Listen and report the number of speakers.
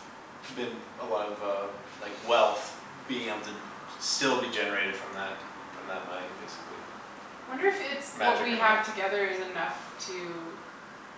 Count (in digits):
2